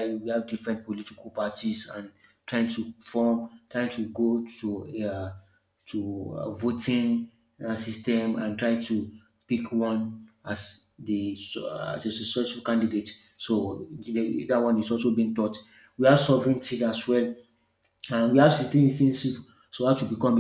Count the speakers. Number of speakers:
1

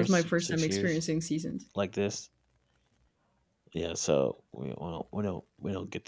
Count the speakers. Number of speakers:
2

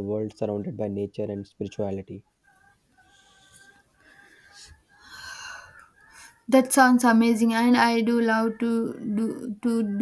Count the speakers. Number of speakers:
2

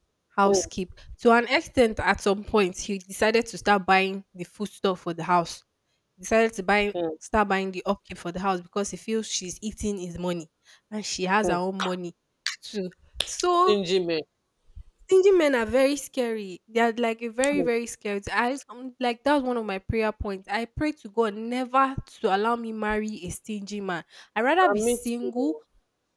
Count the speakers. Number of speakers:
2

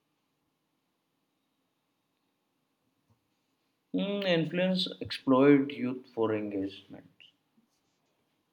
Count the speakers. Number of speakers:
1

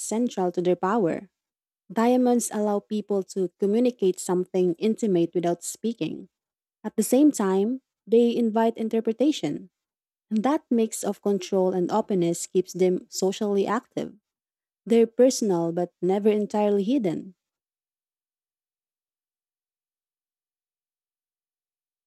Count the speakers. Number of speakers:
1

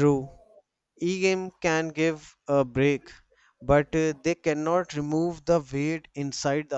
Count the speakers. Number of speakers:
1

